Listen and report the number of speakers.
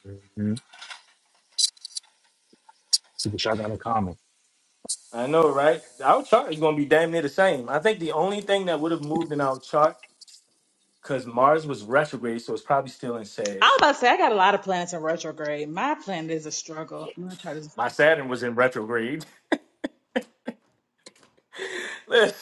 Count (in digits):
3